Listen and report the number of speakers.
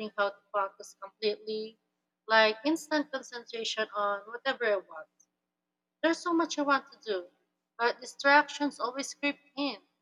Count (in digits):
1